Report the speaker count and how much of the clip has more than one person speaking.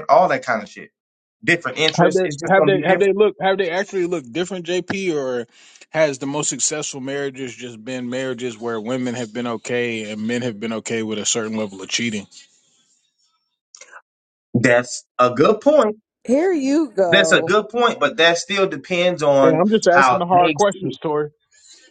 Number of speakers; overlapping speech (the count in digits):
3, about 12%